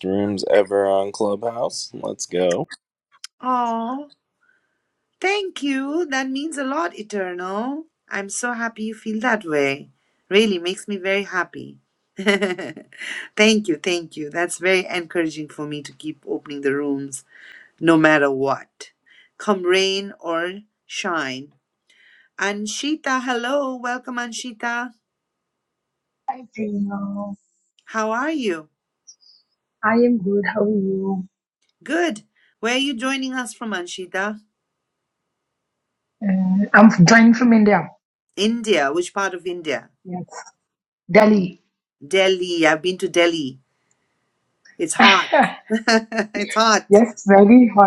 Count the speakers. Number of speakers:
three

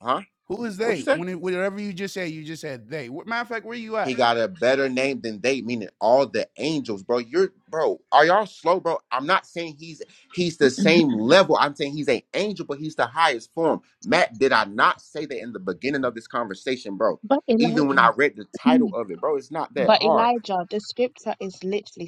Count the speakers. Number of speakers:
three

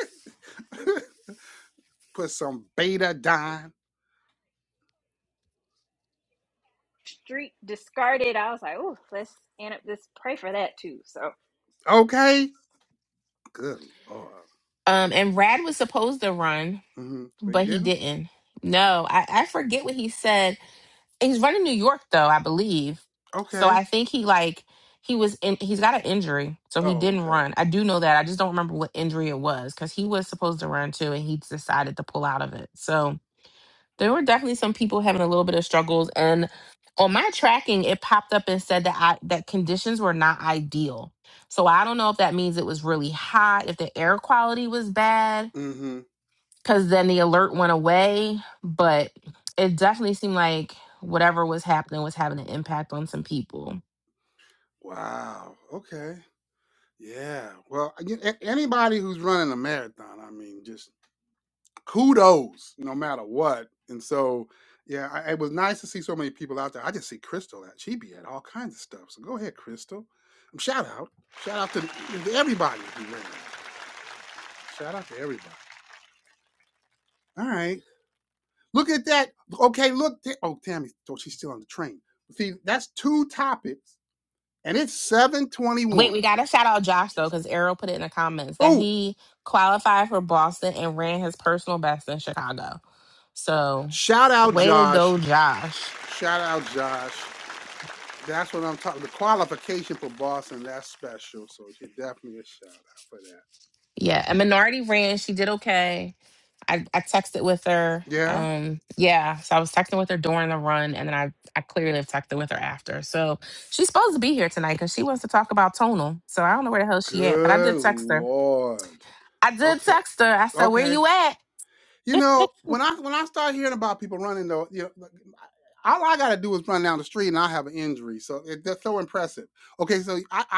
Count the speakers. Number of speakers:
three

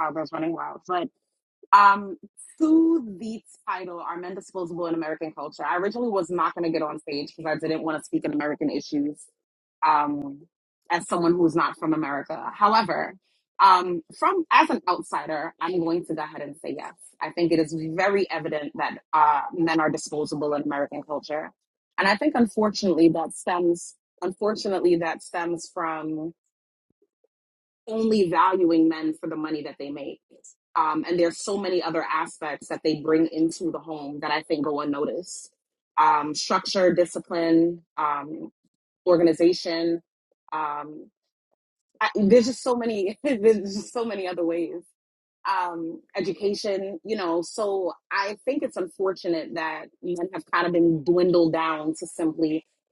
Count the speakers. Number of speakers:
one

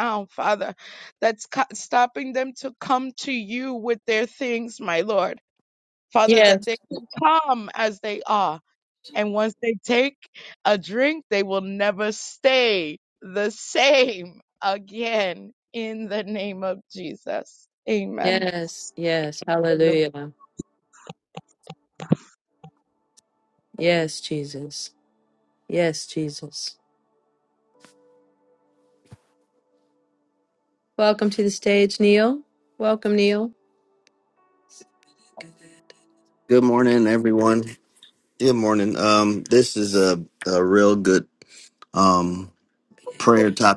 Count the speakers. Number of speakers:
three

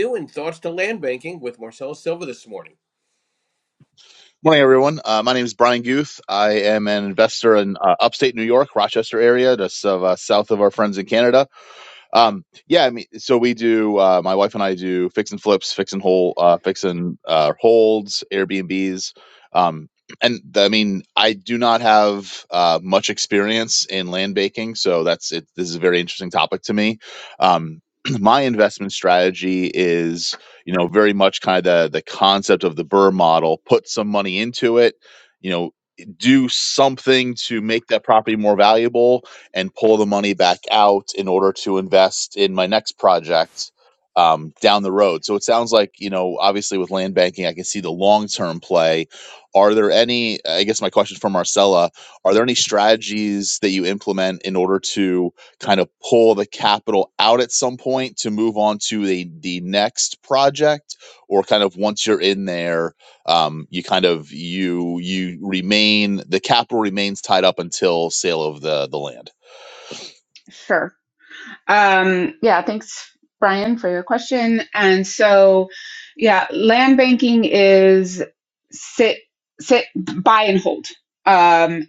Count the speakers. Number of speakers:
three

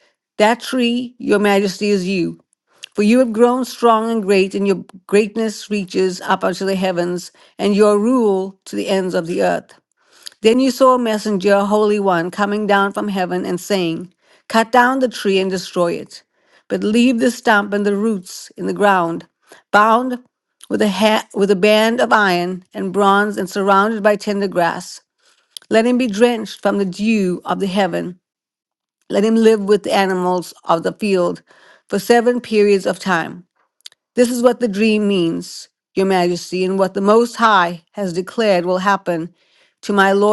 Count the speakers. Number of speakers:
one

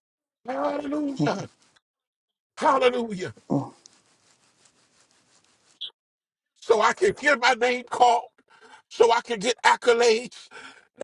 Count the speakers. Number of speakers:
one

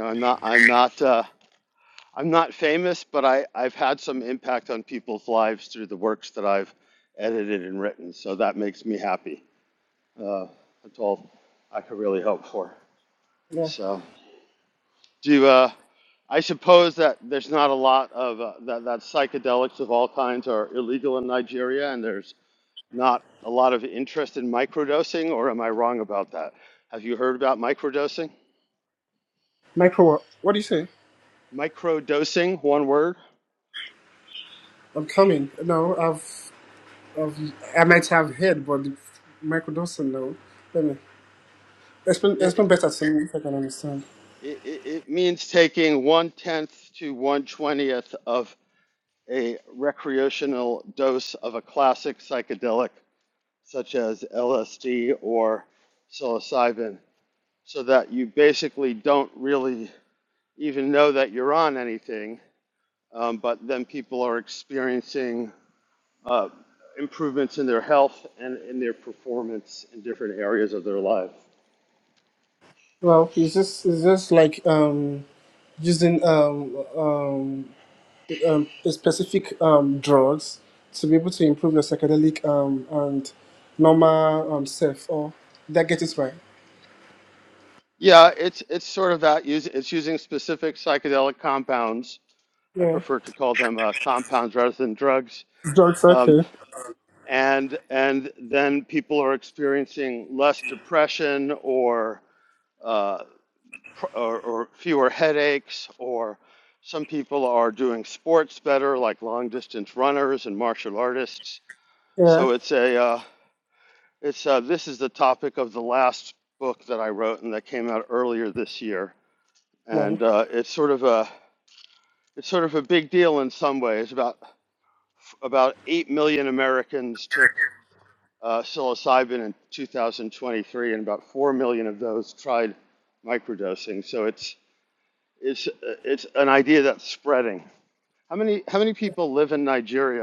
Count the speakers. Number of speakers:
two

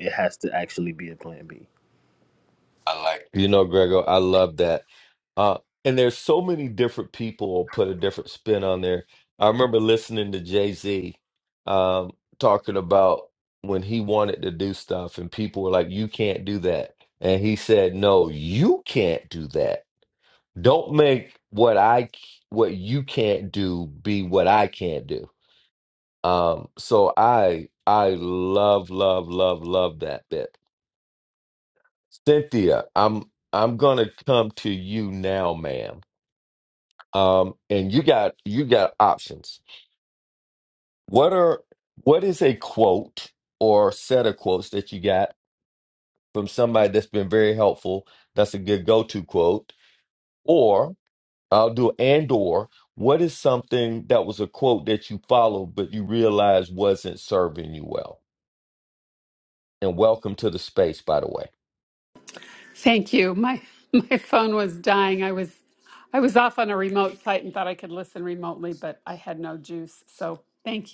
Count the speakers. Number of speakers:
three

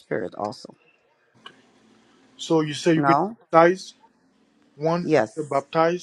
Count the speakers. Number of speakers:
two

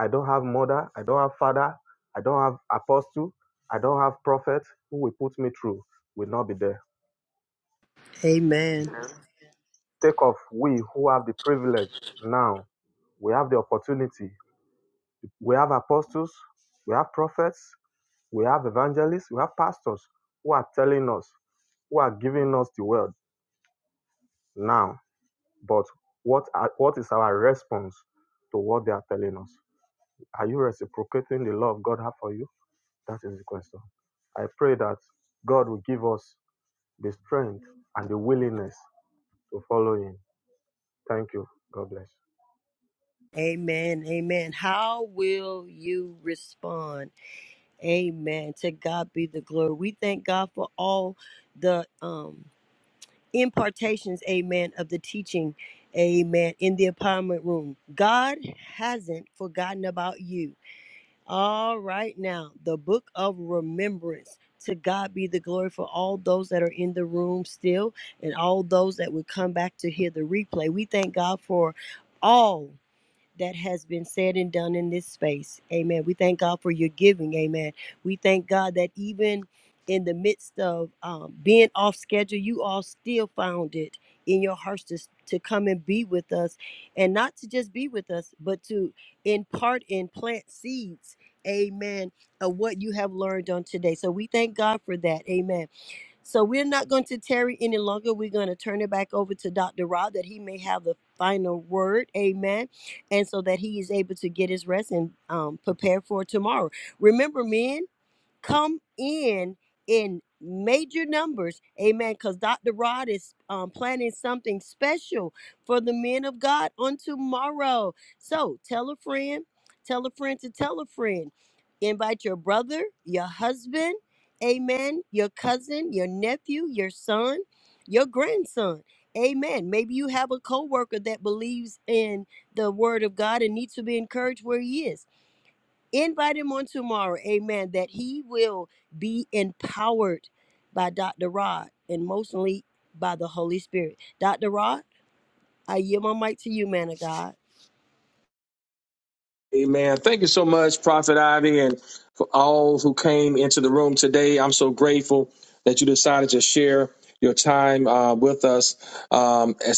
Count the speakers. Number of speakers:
three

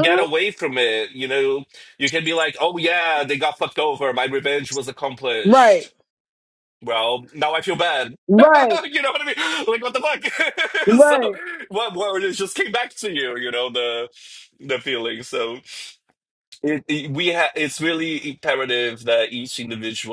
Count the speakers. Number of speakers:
two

